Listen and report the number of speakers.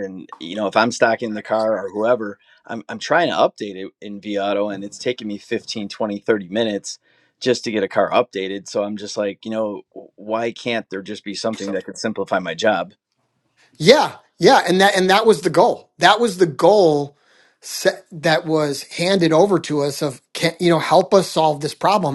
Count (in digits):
2